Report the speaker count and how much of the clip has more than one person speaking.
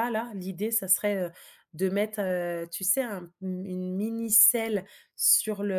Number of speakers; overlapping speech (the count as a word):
one, no overlap